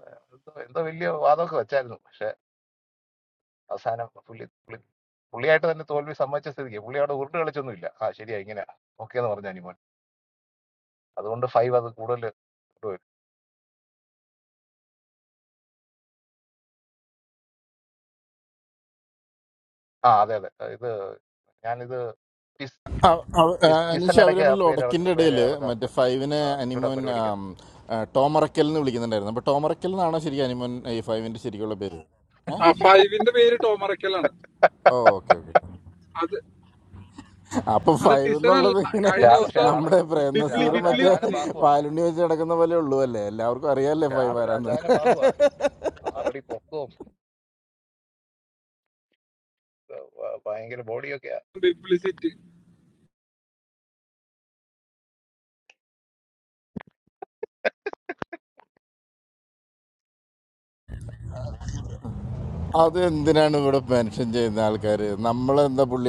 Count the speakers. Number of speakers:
3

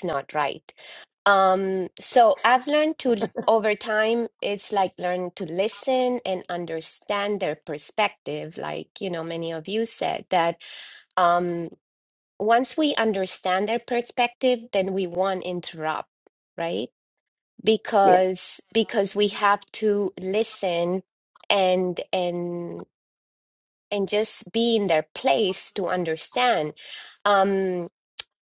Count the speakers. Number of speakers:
1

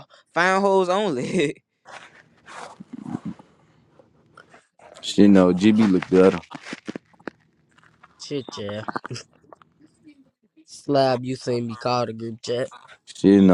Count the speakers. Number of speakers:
3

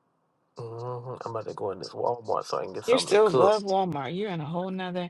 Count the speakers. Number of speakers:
2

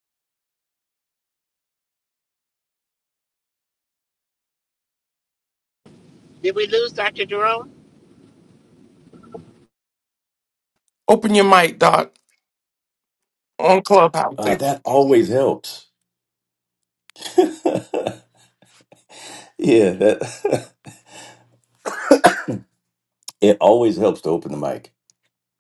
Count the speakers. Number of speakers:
3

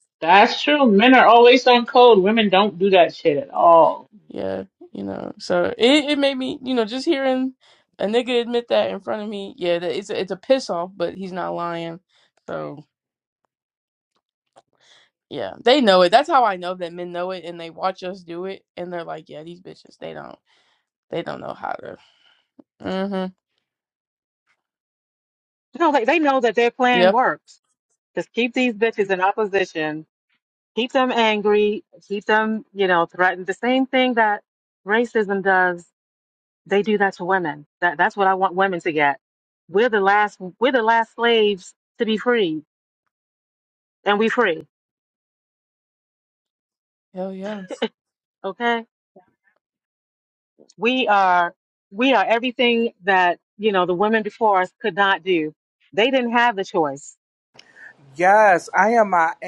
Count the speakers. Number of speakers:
4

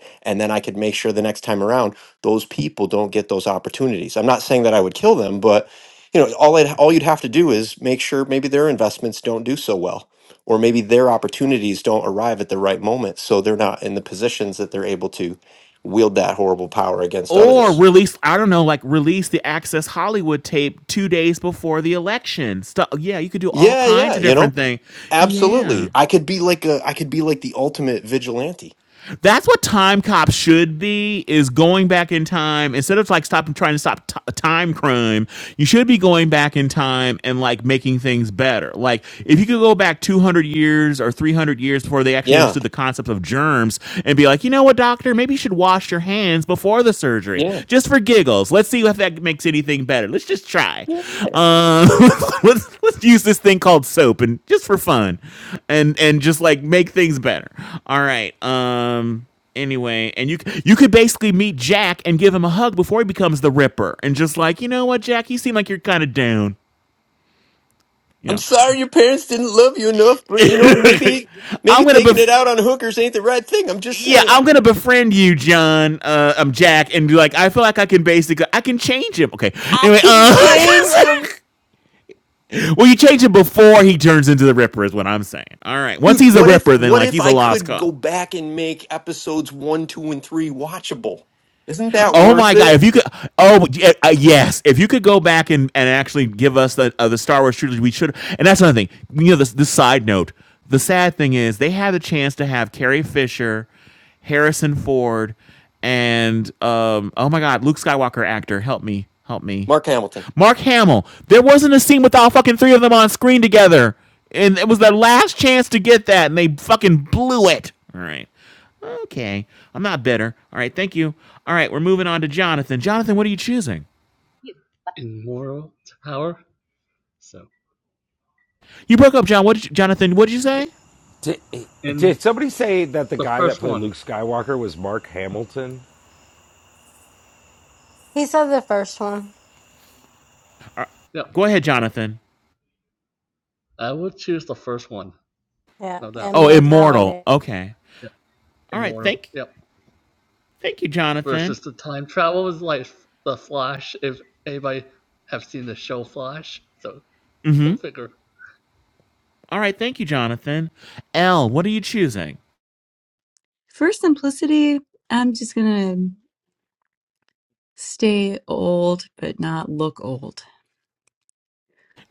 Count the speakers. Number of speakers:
6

